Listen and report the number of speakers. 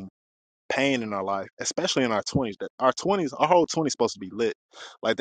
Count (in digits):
1